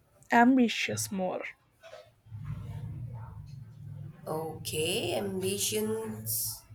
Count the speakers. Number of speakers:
2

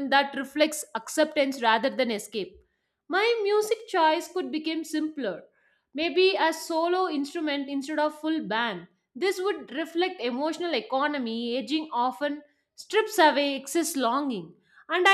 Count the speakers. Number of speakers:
1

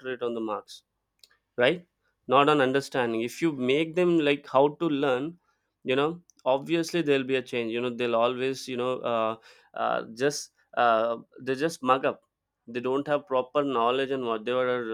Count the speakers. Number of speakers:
1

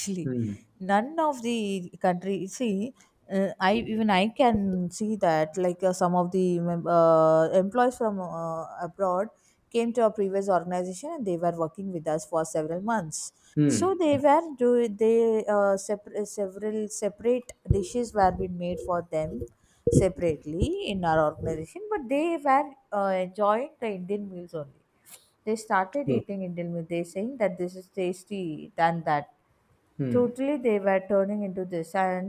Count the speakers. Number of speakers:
2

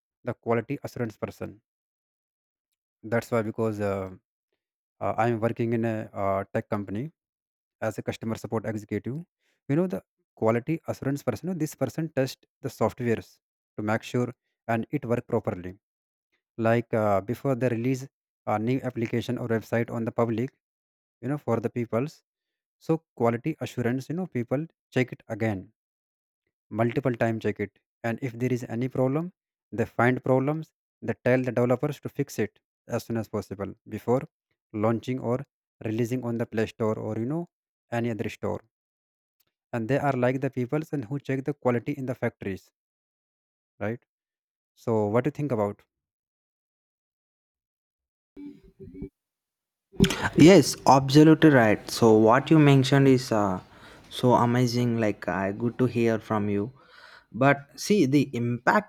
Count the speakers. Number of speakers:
2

